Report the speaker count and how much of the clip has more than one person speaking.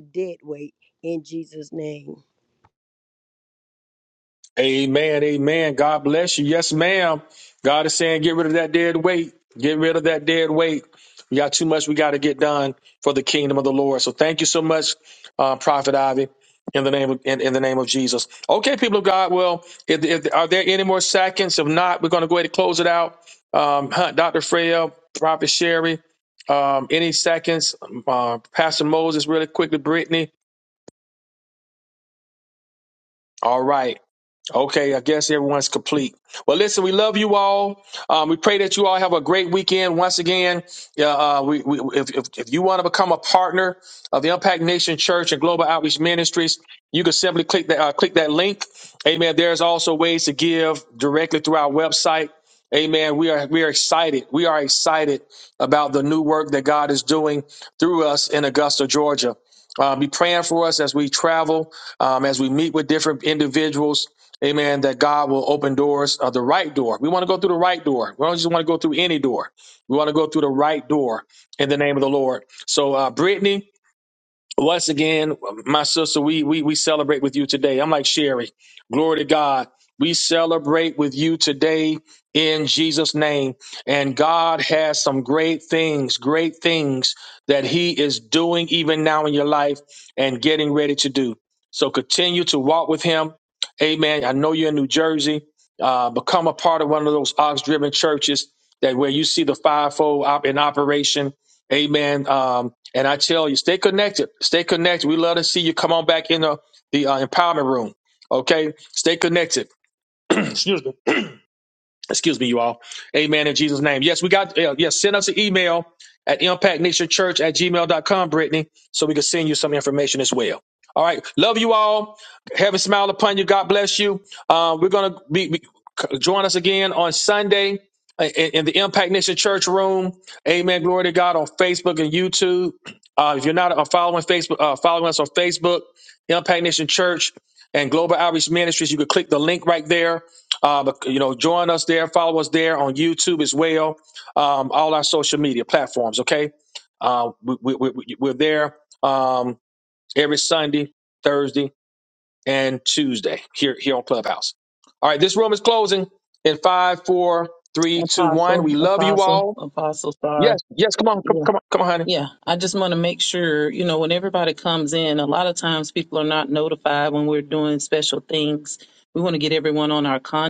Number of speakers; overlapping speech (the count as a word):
three, about 1%